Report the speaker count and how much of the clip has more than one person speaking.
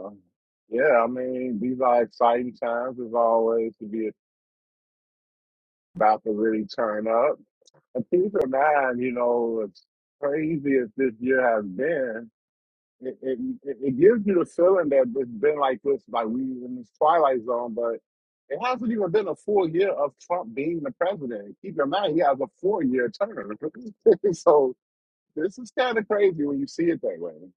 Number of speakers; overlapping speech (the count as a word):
one, no overlap